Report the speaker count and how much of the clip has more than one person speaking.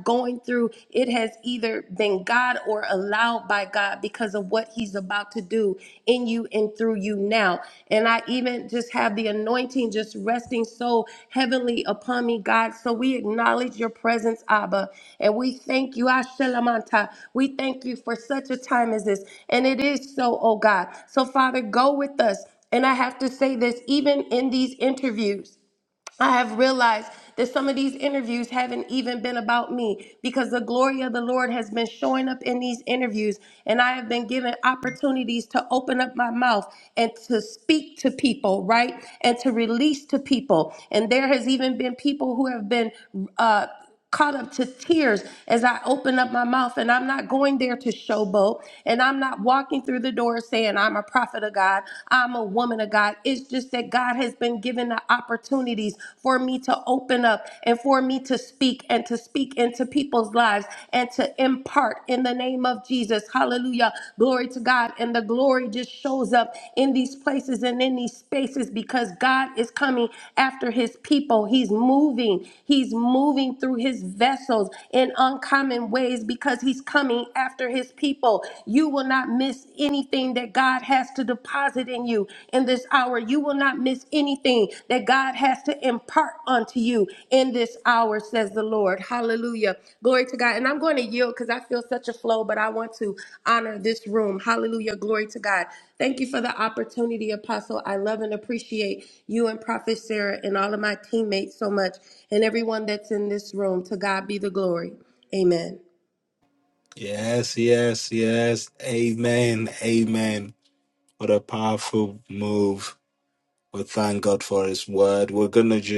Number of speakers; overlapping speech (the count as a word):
two, no overlap